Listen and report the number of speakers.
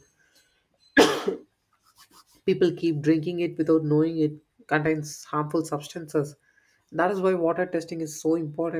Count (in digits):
1